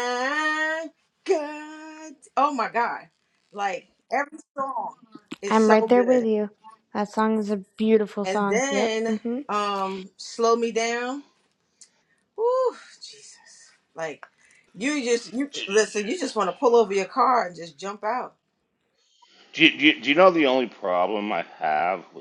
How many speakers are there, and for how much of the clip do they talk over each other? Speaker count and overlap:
3, about 8%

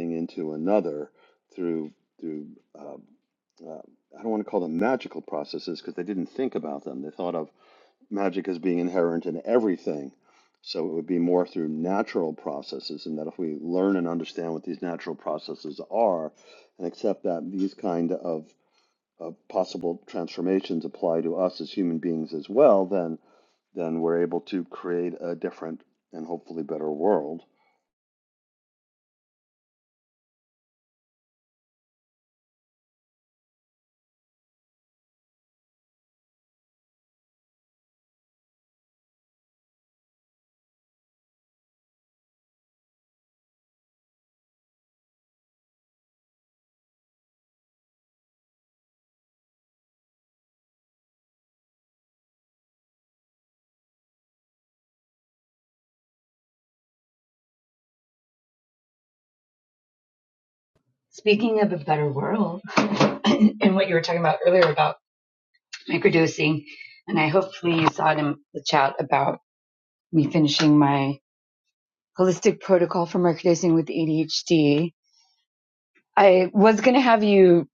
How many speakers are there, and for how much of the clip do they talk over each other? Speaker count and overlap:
2, no overlap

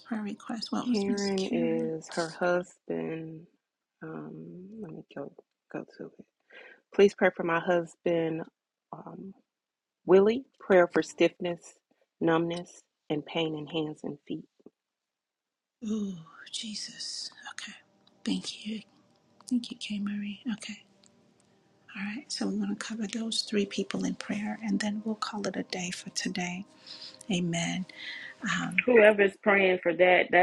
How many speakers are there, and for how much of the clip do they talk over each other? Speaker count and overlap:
3, about 5%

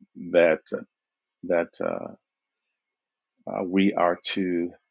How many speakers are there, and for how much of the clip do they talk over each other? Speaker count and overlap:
1, no overlap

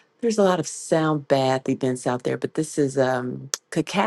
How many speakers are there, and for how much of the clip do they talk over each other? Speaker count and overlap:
1, no overlap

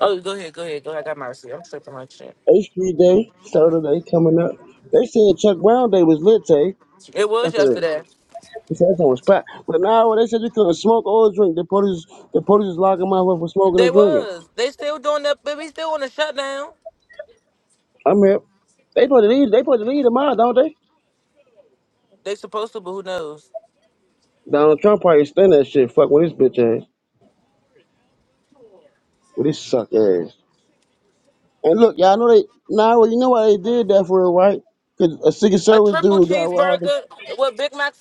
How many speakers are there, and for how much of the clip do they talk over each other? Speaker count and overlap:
2, about 5%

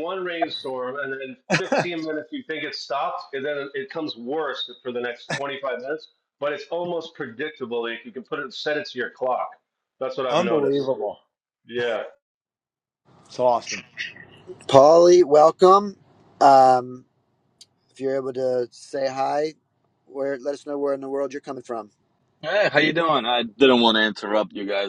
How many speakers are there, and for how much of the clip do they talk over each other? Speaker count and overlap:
4, about 2%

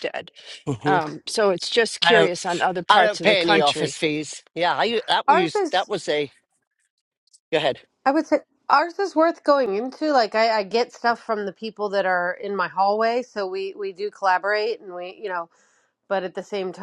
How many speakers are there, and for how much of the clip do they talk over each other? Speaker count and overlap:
3, about 11%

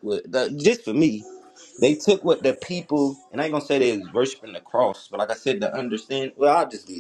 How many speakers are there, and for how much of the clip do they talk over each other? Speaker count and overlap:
1, no overlap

